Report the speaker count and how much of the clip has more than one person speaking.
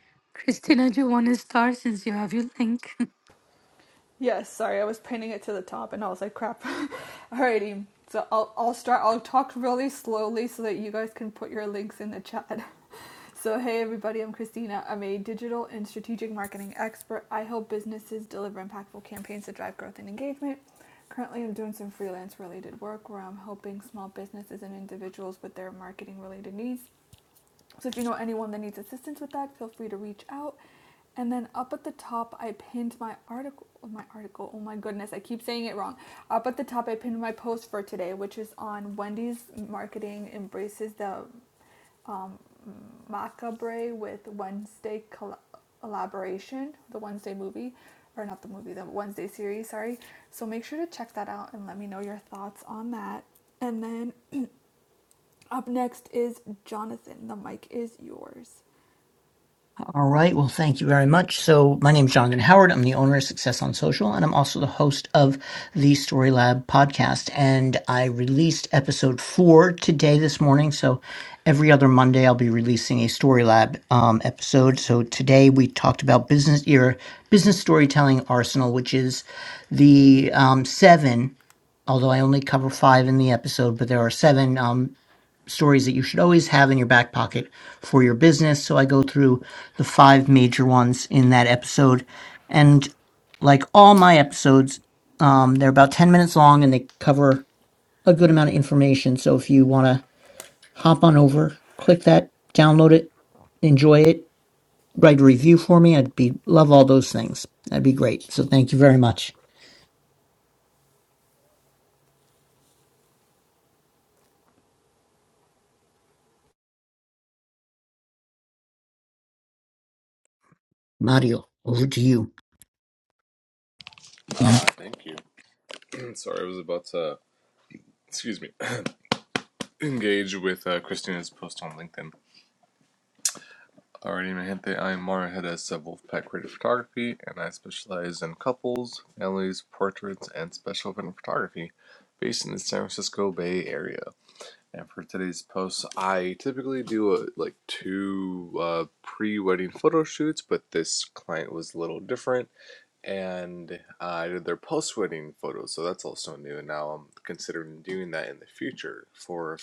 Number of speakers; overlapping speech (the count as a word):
four, no overlap